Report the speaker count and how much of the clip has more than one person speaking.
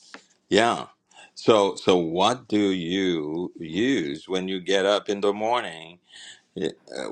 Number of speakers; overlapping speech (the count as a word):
one, no overlap